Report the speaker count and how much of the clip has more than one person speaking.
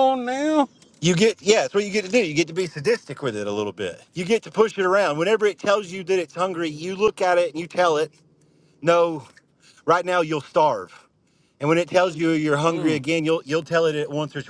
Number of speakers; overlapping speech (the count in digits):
2, about 2%